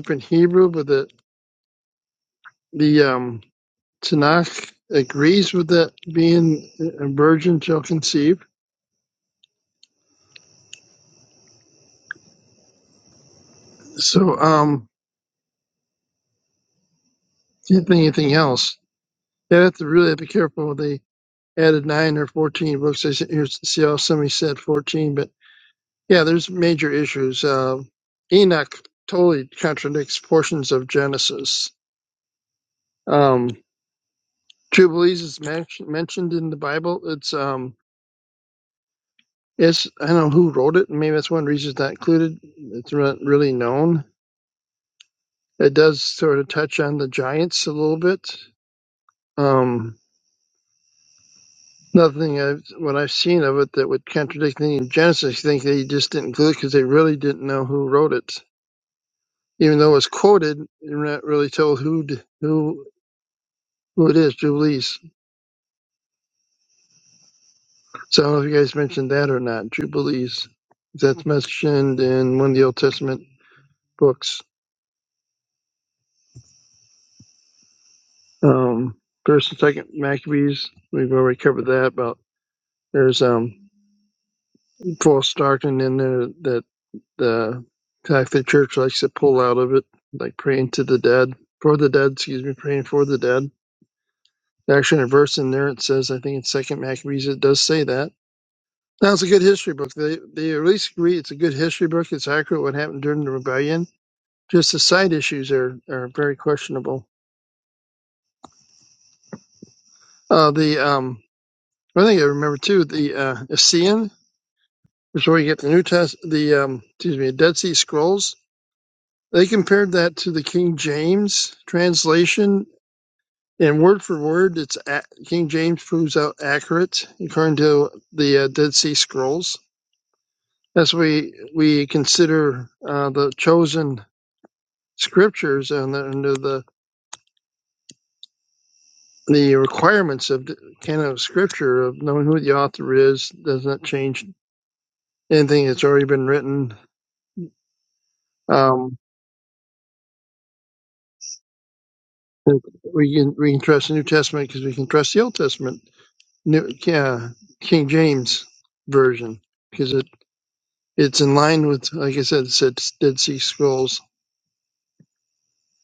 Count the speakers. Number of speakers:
one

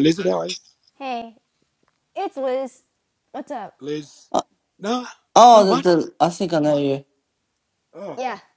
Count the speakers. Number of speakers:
three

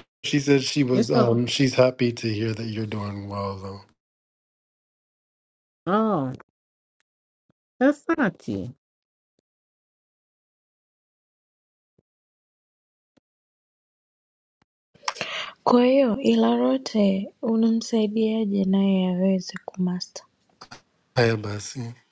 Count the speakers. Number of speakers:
three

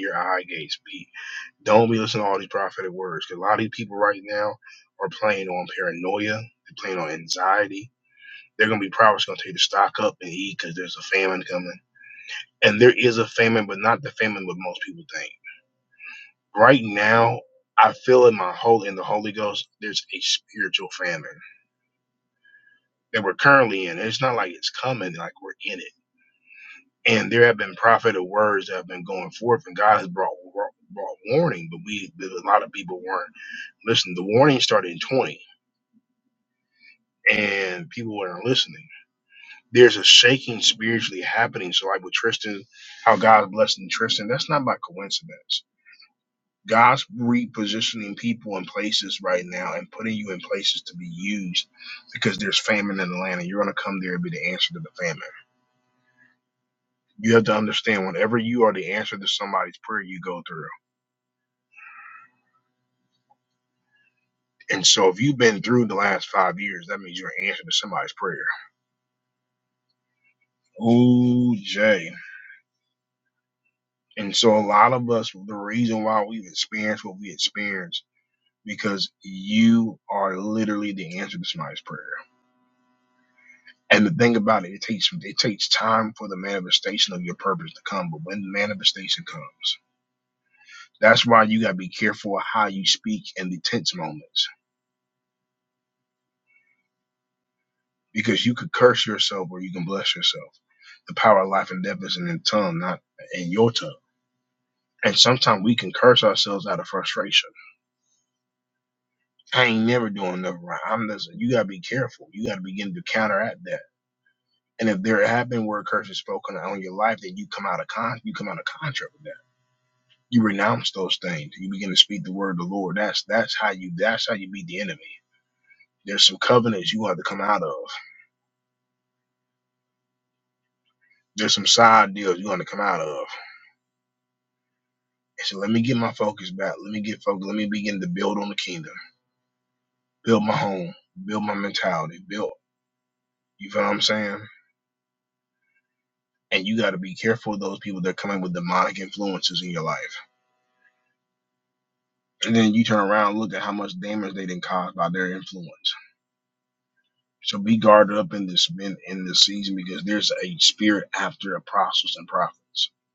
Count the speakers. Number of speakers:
one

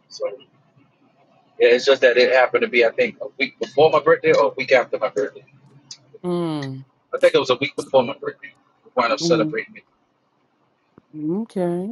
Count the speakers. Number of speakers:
two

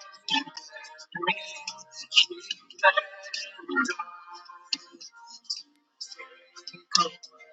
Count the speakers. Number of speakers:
zero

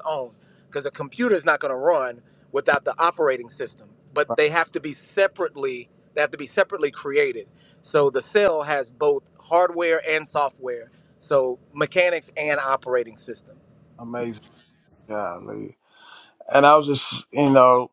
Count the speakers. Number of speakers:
two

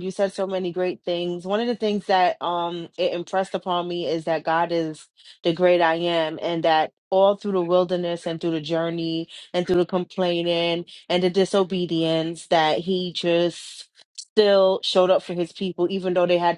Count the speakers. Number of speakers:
one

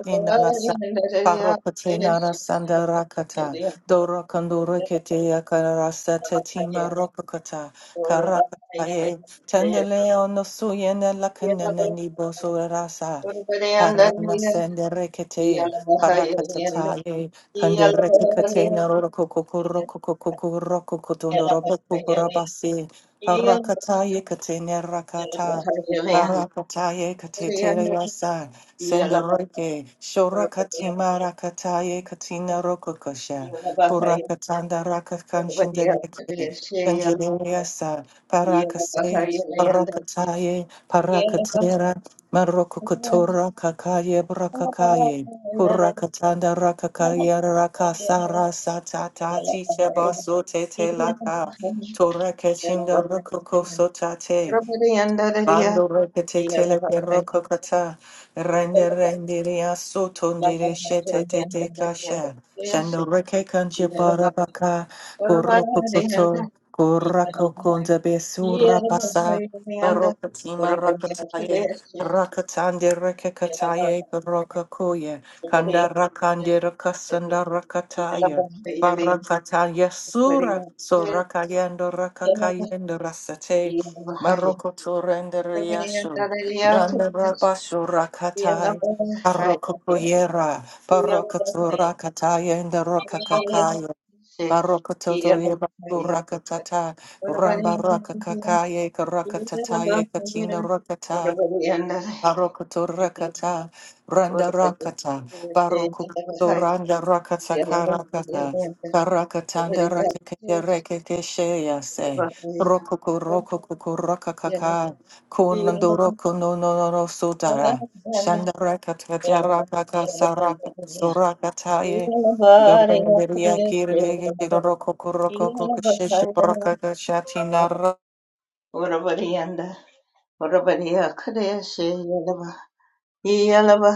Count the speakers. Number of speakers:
two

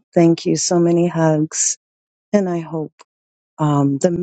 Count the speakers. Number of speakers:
one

